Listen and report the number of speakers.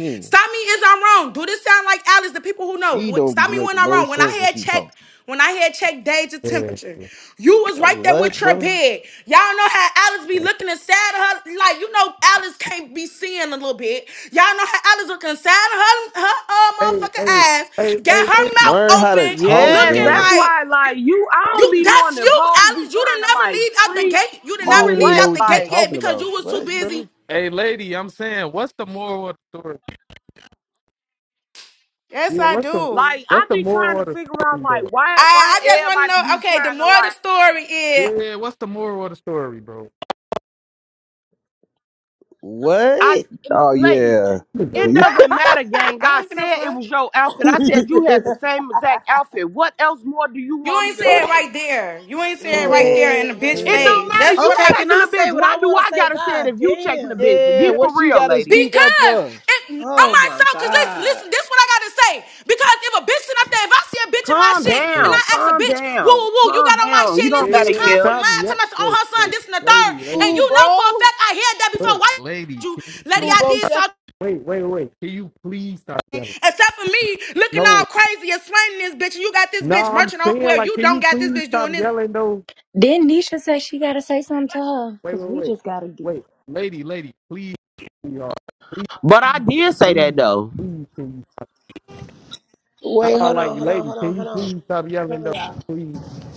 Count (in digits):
6